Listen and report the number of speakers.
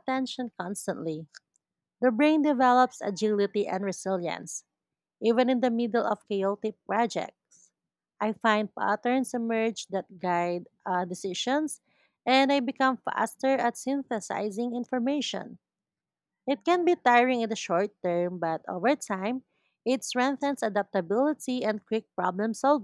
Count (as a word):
one